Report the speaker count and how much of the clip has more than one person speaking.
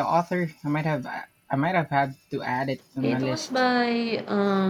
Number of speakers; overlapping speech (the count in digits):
2, about 10%